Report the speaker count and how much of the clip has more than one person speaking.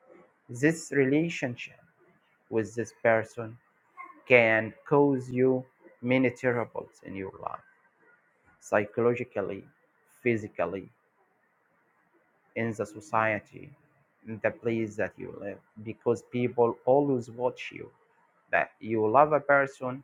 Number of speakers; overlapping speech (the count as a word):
one, no overlap